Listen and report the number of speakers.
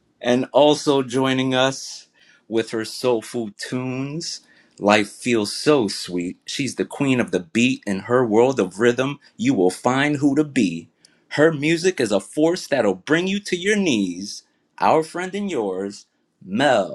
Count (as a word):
one